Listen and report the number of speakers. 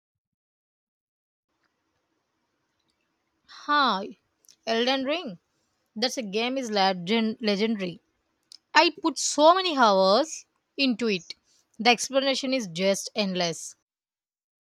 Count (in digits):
1